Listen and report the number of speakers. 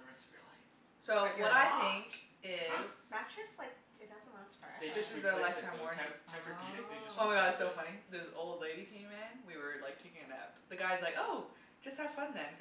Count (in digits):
3